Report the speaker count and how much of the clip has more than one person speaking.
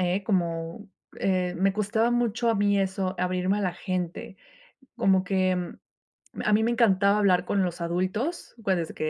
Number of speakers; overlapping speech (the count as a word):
one, no overlap